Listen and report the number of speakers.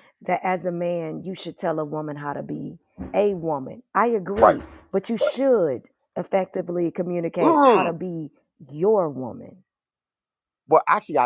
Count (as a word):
two